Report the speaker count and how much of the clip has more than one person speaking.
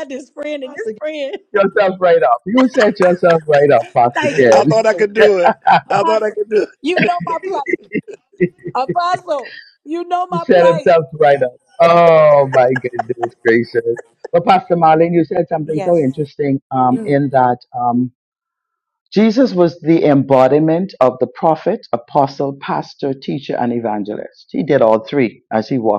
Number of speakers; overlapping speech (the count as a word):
three, about 11%